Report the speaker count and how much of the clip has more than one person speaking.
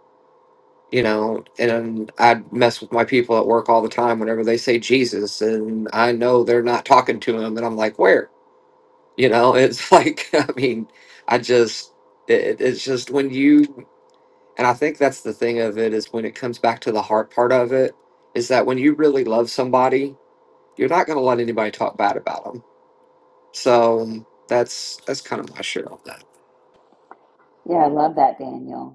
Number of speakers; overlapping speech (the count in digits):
2, no overlap